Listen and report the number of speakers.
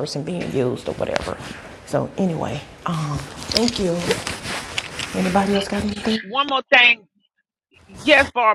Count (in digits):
2